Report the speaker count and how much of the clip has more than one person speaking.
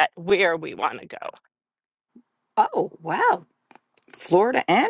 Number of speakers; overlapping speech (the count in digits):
2, no overlap